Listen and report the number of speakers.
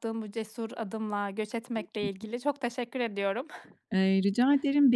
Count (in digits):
2